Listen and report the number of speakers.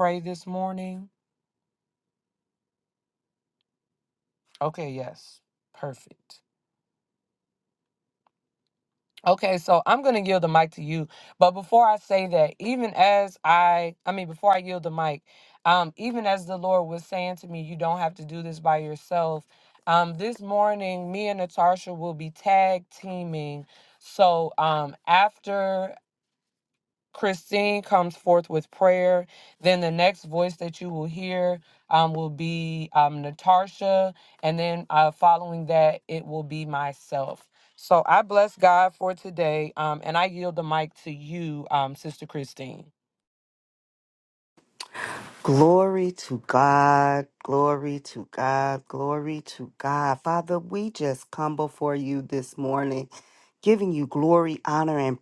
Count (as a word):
two